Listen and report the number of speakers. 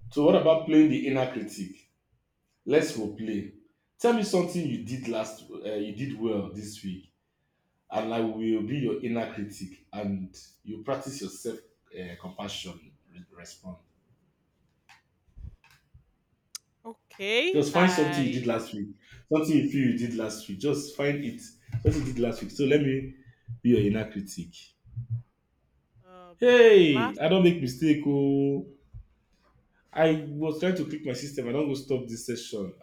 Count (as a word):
two